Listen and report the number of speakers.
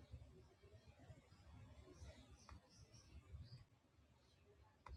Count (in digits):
0